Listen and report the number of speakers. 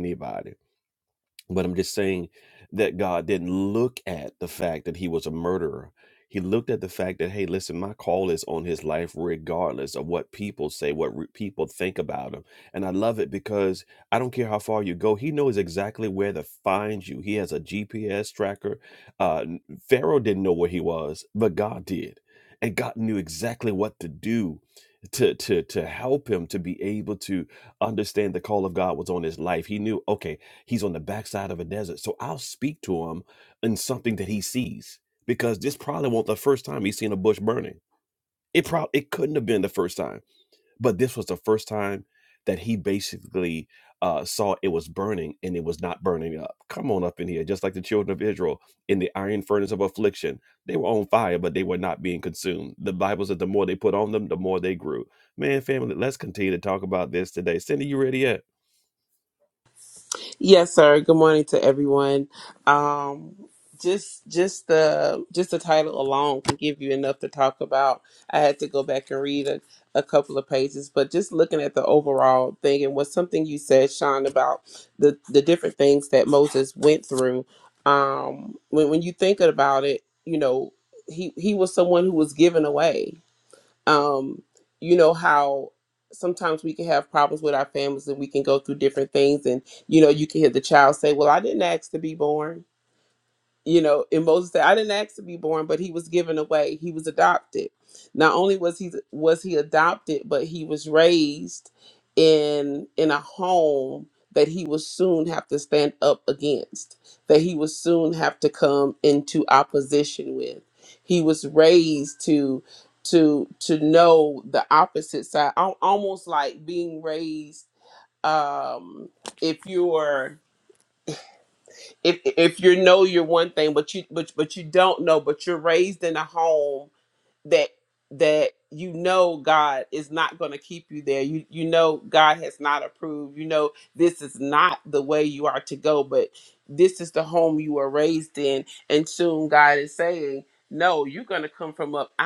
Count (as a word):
two